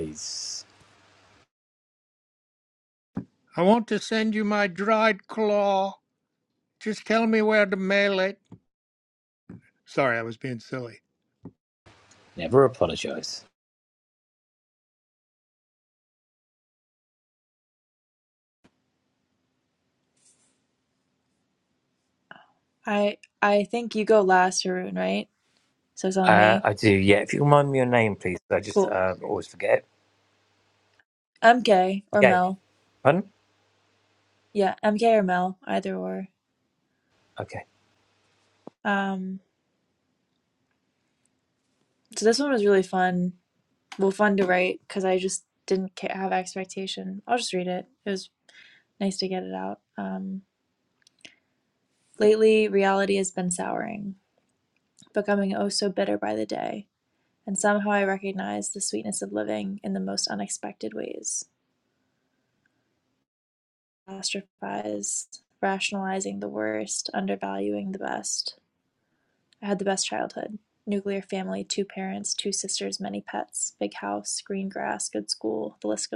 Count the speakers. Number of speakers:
three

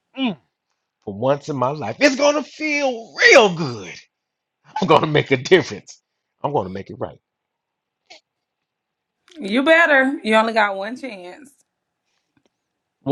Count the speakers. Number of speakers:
two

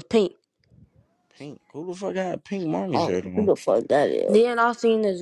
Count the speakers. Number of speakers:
three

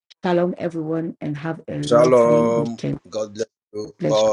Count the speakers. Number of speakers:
two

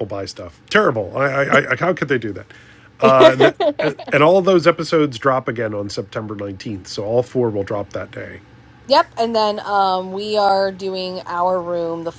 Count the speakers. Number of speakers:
two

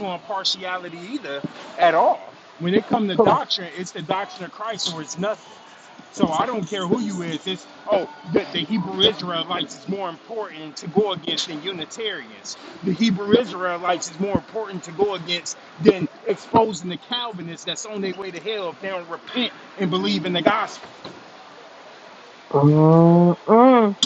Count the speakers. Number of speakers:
two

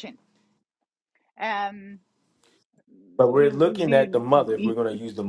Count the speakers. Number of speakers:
two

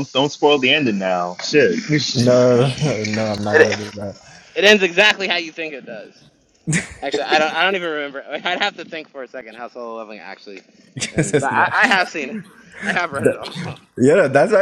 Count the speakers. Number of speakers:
three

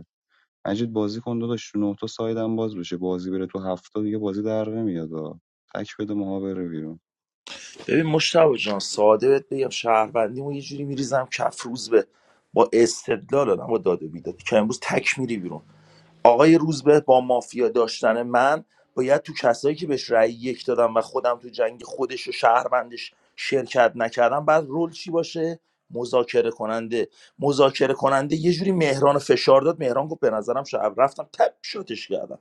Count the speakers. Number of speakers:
two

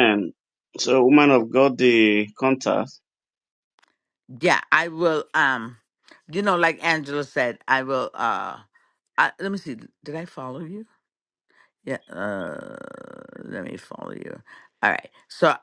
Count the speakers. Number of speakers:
two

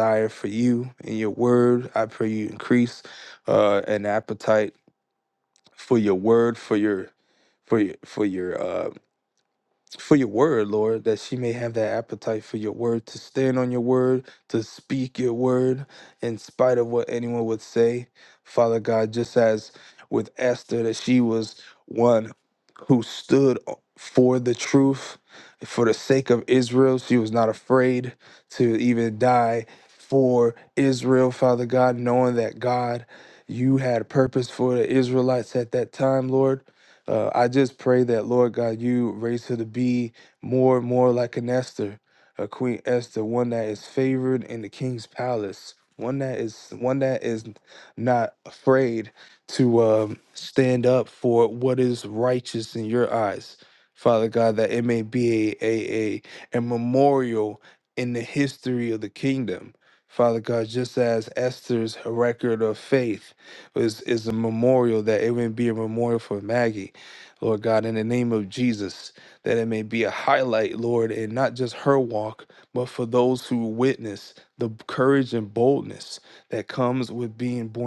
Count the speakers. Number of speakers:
one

